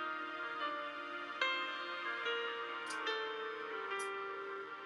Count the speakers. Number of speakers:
0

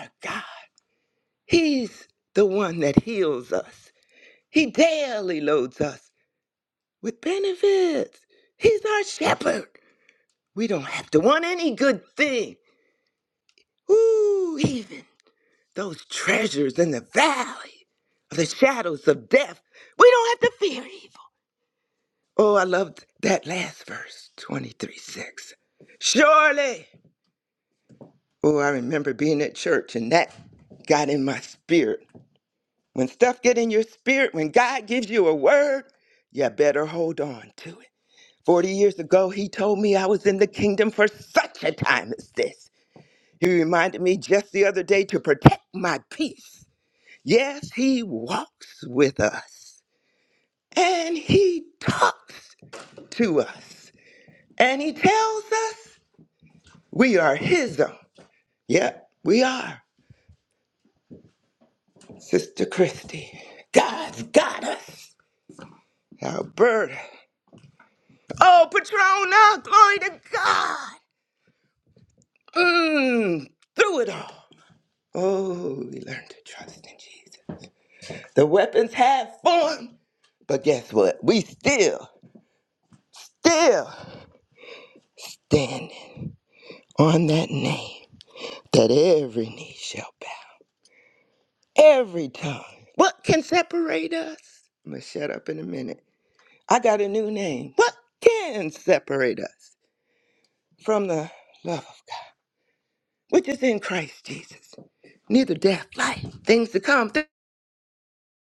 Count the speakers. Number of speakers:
1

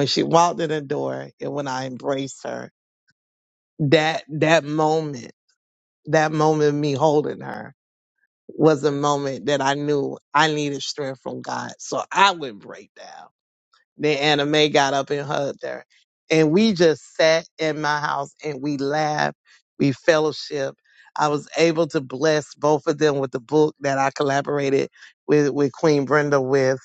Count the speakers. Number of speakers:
1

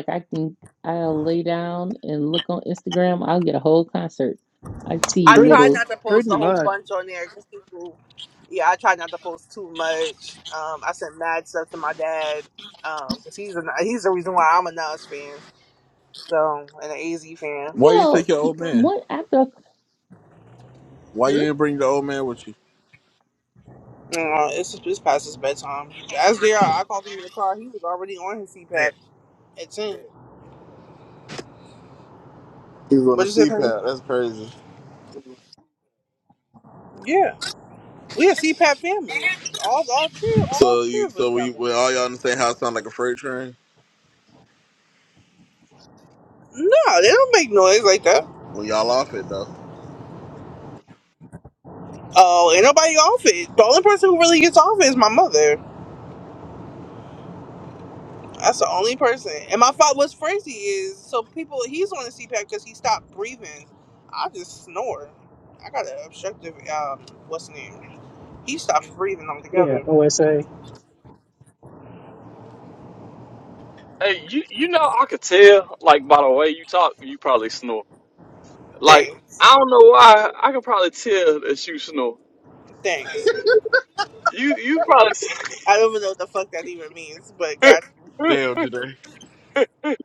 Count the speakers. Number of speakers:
5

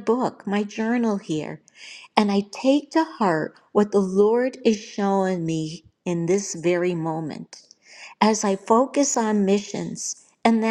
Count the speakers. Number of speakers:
1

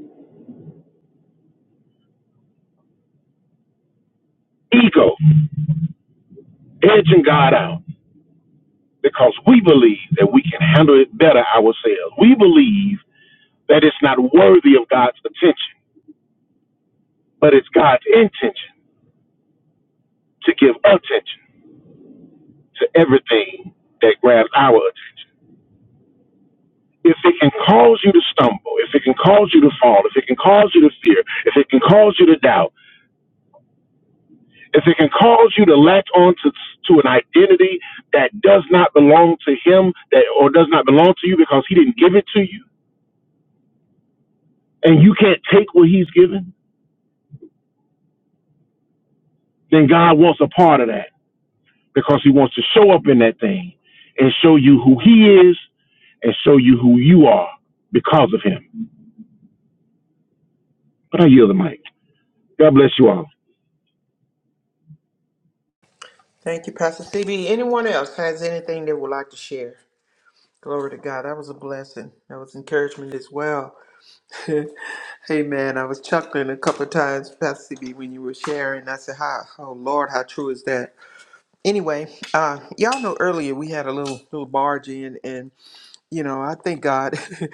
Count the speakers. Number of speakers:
2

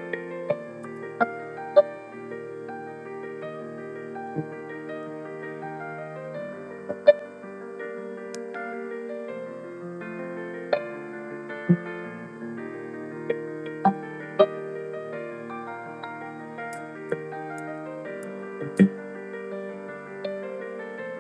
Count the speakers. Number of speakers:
0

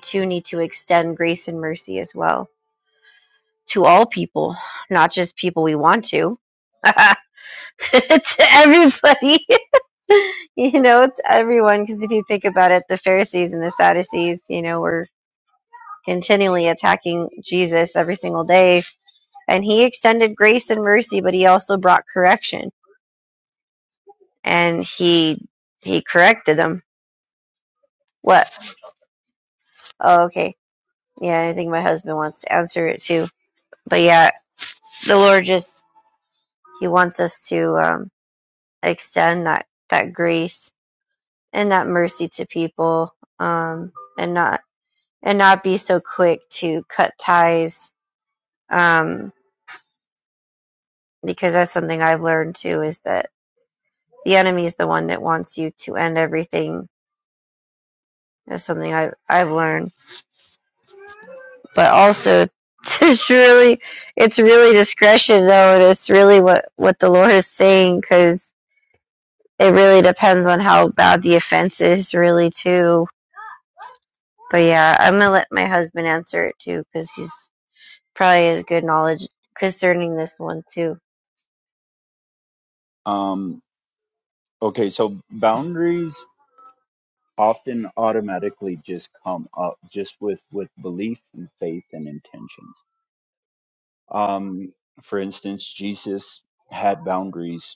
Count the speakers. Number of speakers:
2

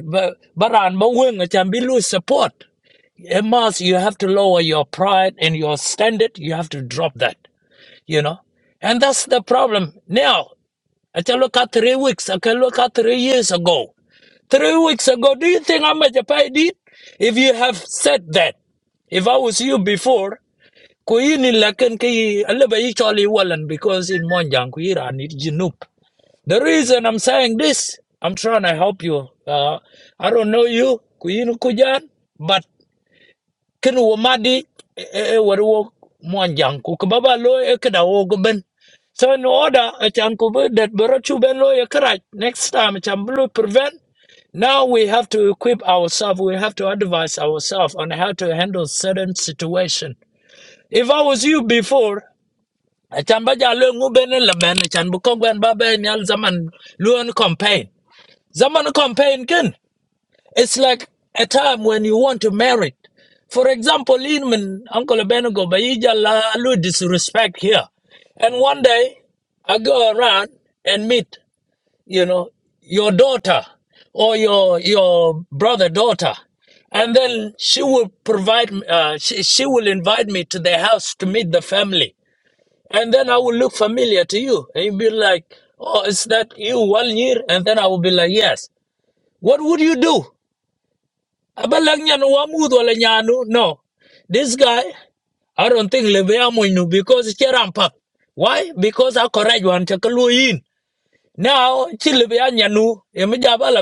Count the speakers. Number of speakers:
1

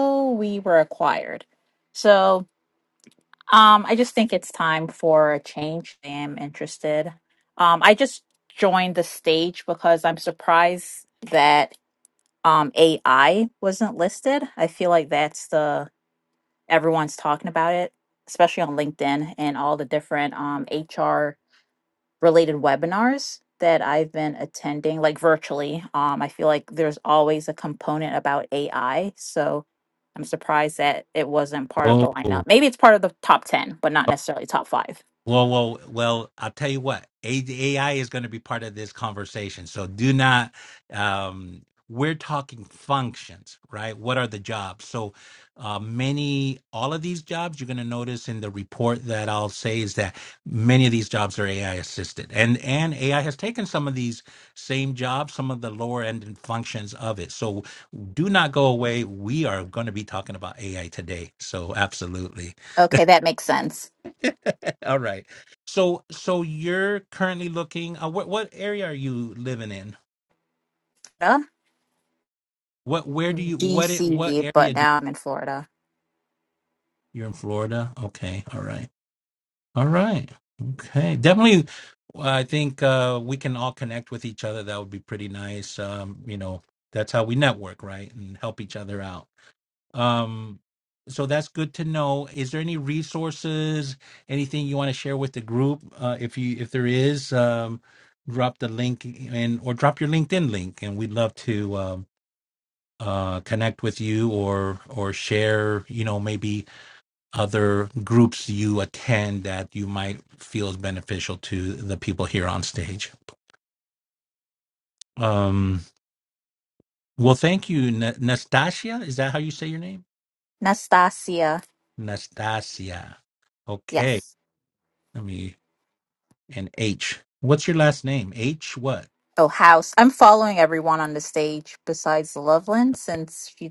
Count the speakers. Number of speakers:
2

